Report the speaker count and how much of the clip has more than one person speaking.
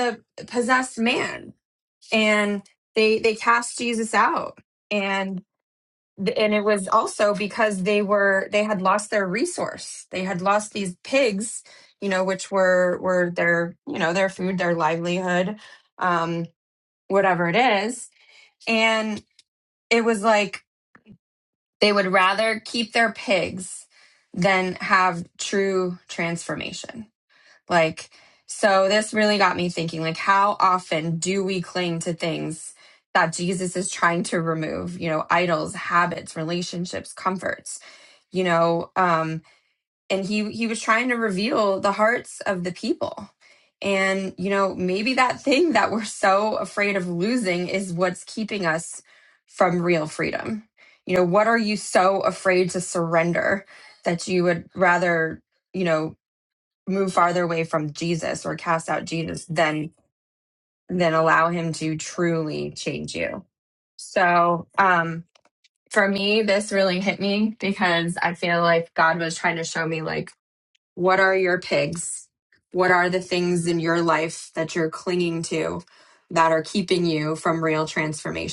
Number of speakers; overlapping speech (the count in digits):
1, no overlap